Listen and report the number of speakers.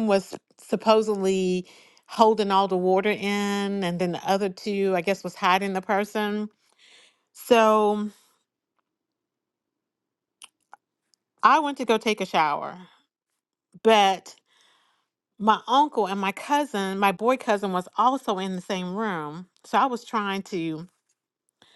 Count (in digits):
1